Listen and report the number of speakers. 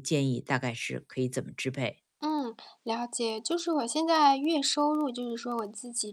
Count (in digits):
2